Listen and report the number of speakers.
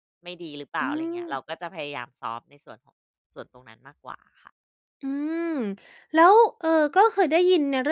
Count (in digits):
2